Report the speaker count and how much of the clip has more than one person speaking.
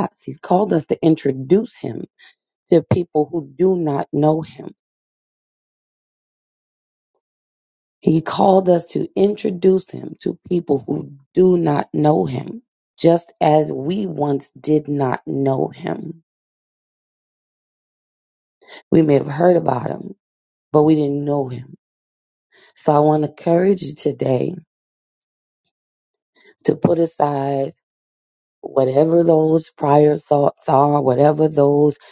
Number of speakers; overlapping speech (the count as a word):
one, no overlap